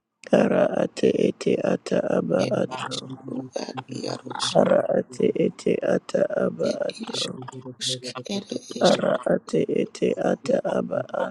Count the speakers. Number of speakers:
two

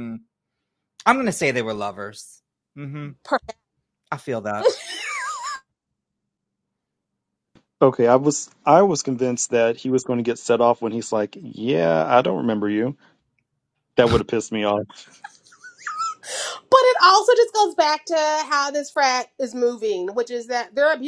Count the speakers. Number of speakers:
three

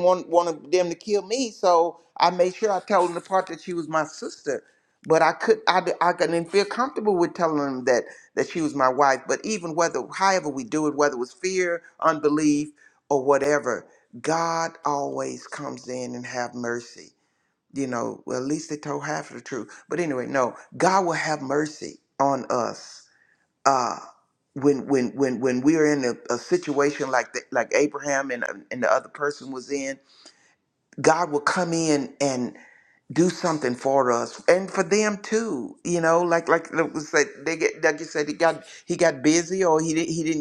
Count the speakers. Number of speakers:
one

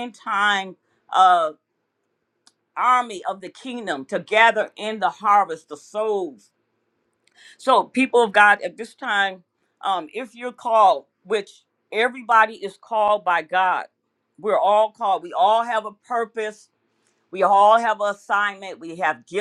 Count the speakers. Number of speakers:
one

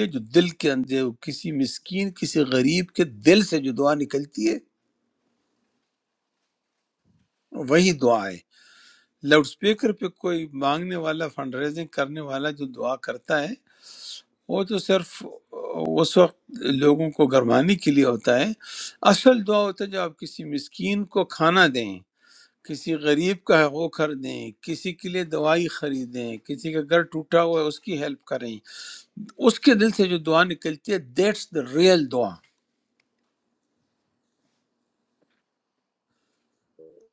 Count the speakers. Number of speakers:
one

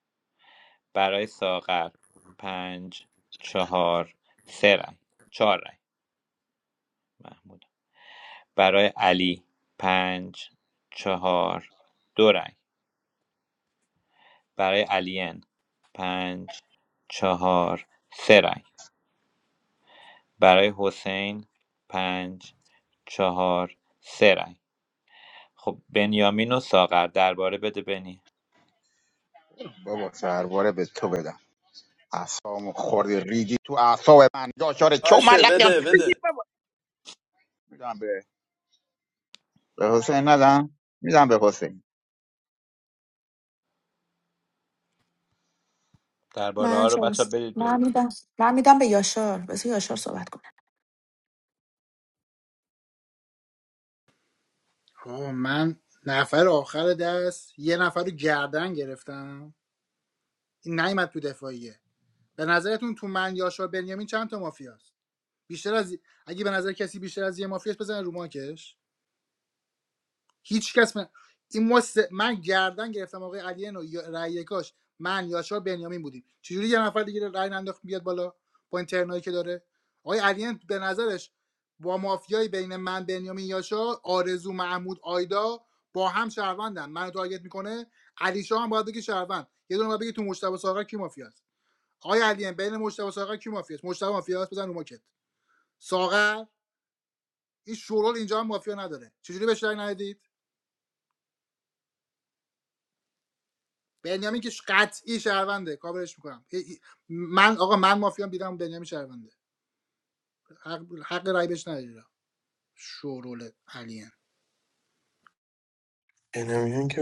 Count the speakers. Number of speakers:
five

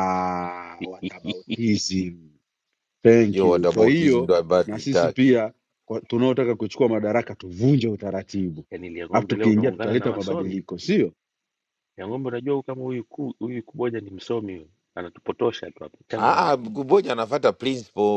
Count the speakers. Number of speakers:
three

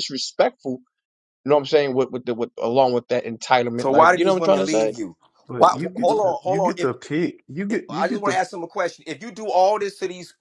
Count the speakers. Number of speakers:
three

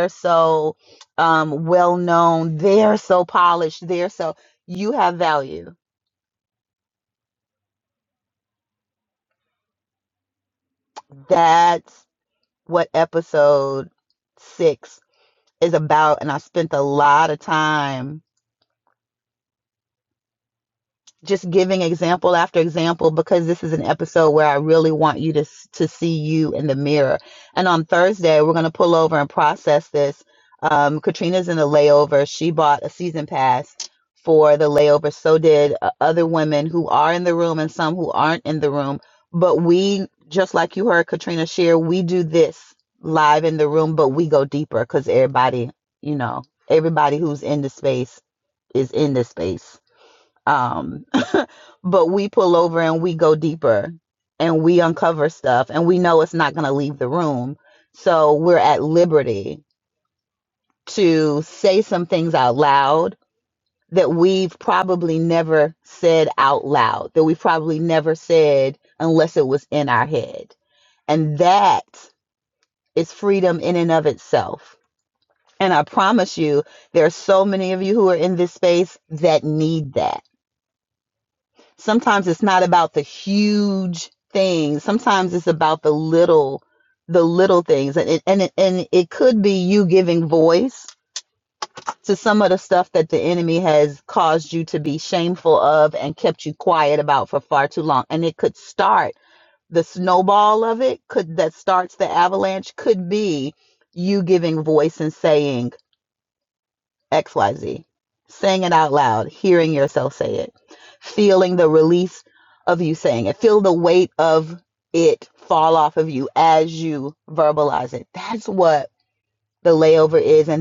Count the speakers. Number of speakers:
one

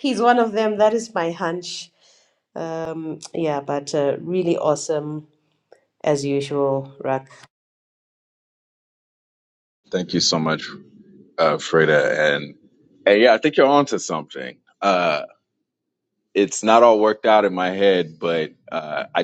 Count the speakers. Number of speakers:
two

